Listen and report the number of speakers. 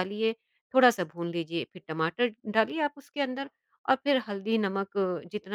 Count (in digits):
1